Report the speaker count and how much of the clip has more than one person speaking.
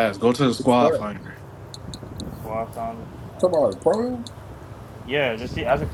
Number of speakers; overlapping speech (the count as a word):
three, about 11%